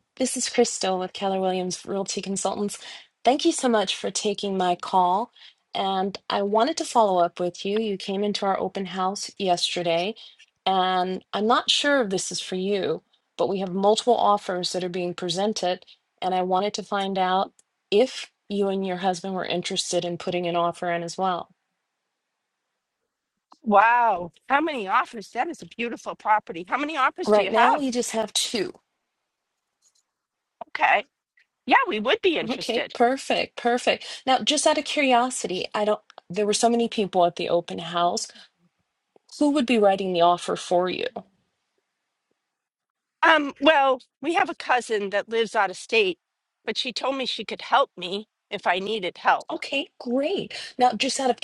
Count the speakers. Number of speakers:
two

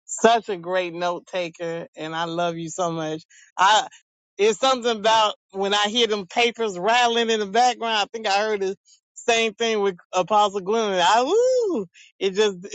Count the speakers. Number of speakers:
one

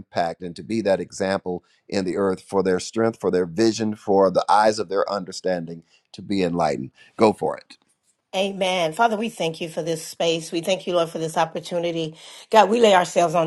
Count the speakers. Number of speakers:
two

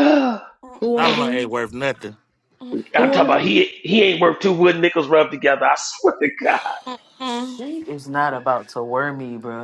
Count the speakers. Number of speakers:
four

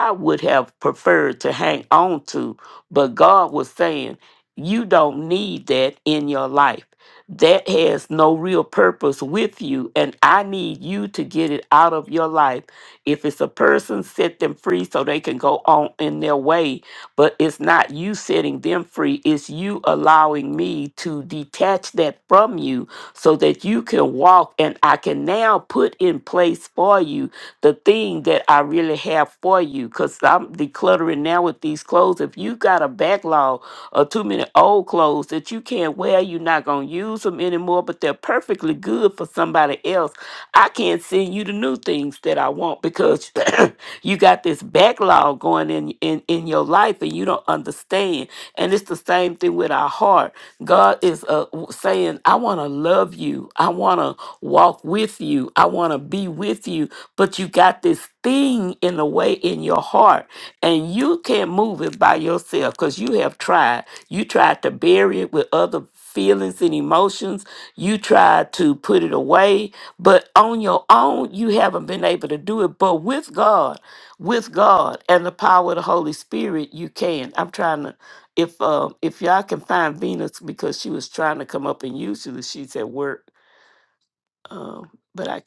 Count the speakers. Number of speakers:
one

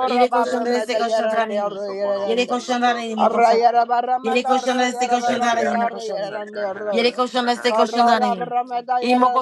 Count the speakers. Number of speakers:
two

